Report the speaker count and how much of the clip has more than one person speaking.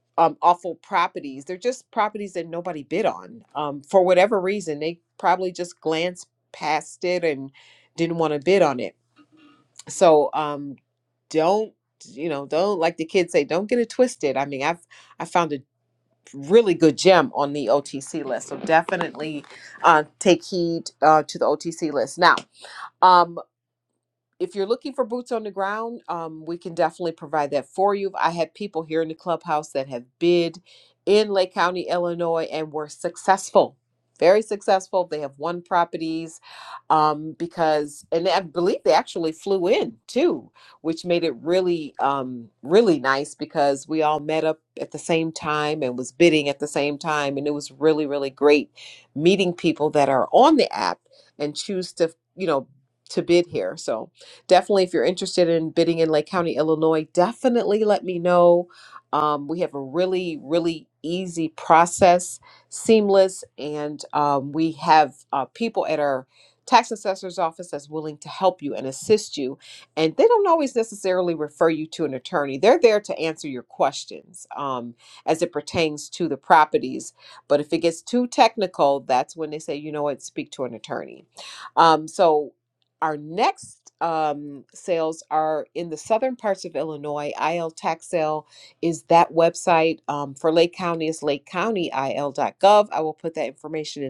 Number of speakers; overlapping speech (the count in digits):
1, no overlap